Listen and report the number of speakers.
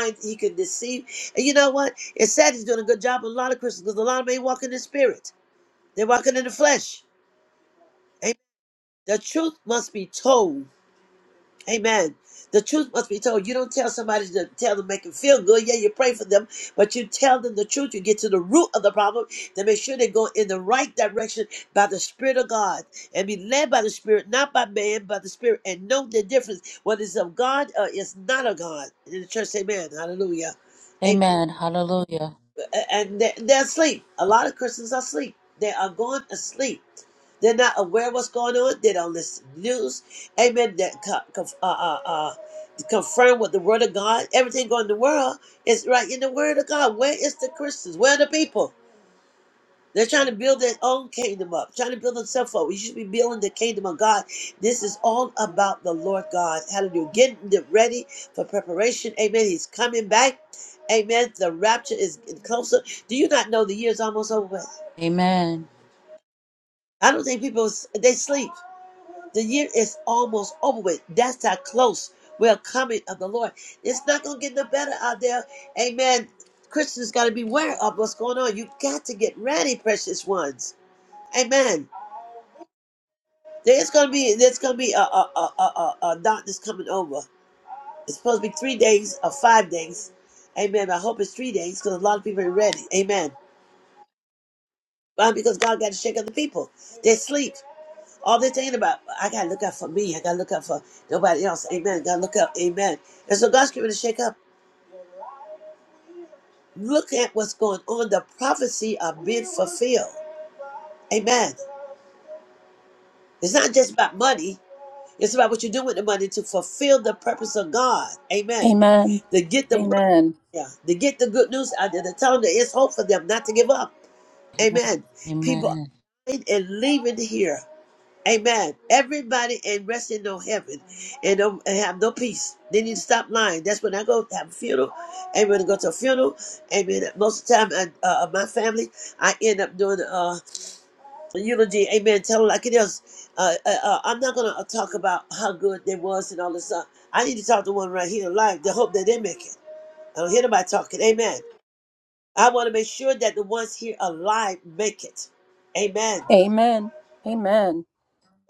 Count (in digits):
3